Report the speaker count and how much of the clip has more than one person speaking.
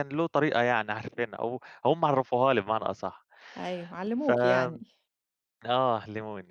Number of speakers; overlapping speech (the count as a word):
two, about 8%